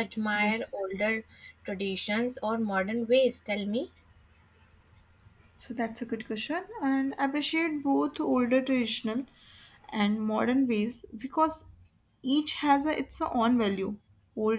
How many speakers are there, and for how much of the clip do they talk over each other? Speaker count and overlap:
2, about 1%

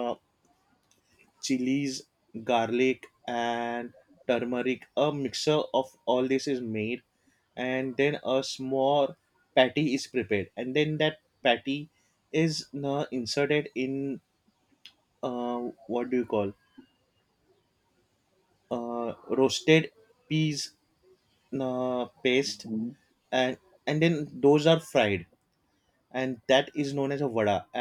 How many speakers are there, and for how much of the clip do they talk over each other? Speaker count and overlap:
1, no overlap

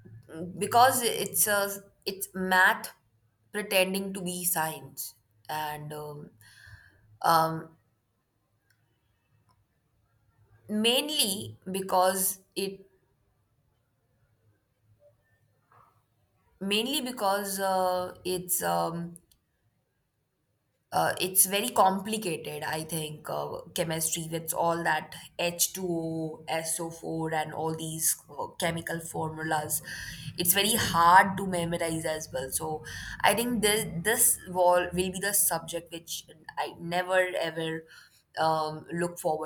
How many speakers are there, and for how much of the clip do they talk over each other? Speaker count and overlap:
1, no overlap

